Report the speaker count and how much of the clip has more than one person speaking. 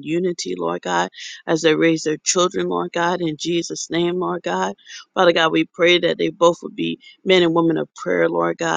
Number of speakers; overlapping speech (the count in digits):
1, no overlap